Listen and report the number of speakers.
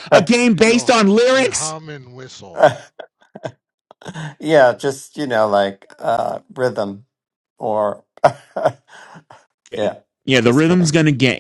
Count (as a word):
three